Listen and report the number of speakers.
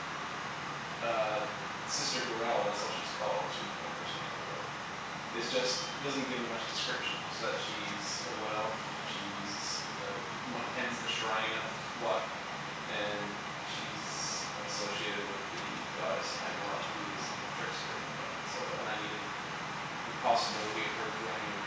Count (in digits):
1